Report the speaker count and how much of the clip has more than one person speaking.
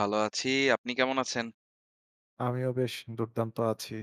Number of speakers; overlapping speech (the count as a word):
two, no overlap